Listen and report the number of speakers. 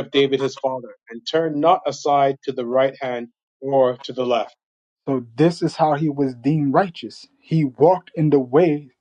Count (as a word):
two